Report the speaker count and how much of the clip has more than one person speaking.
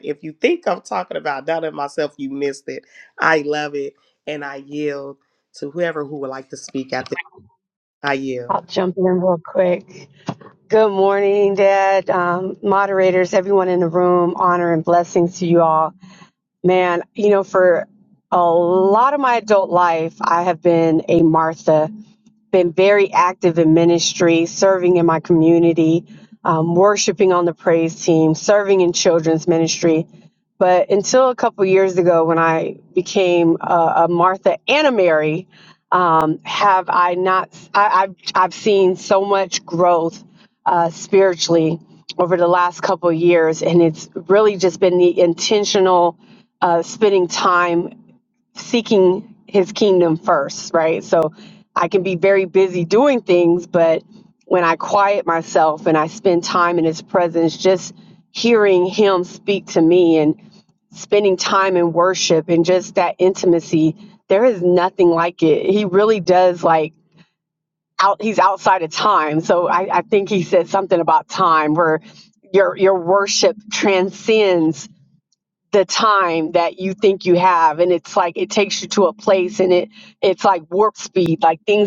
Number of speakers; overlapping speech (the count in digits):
2, under 1%